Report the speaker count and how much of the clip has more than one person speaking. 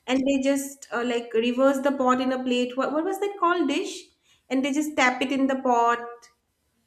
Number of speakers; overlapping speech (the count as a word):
one, no overlap